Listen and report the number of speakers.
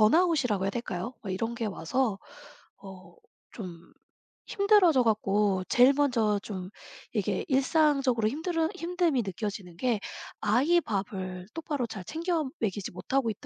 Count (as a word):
one